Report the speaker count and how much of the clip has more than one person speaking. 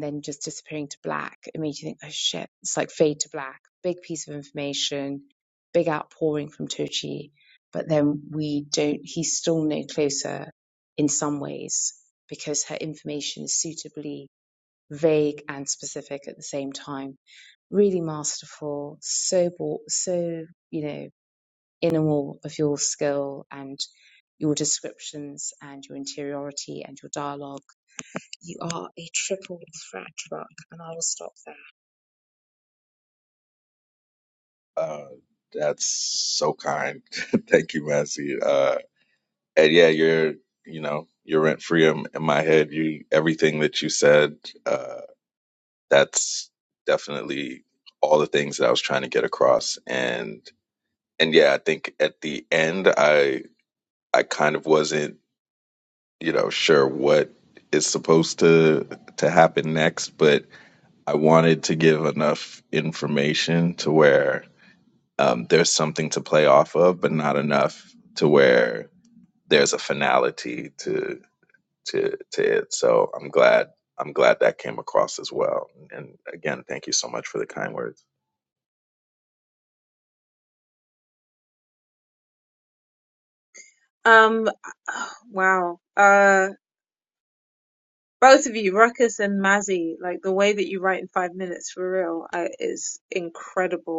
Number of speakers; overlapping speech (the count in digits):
3, no overlap